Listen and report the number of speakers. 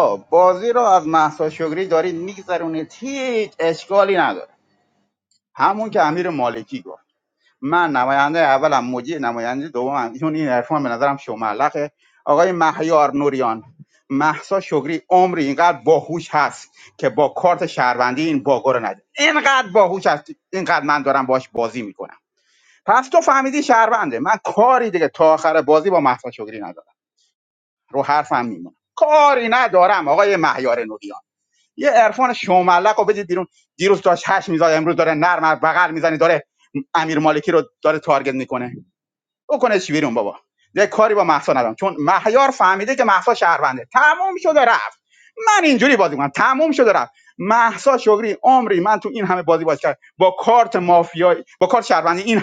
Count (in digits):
1